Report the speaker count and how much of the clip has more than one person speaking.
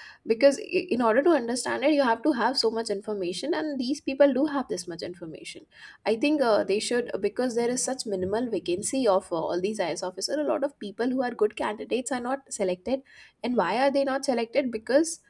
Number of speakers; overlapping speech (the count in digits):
1, no overlap